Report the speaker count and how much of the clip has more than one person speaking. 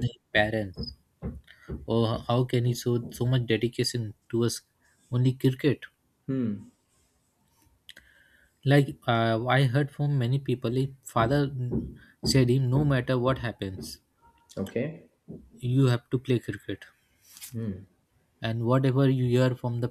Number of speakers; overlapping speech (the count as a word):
two, under 1%